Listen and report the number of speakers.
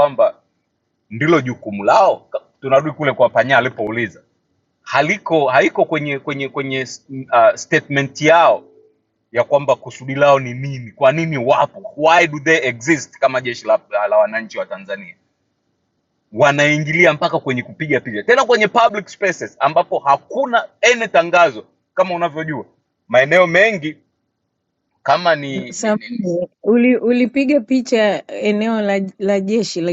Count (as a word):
two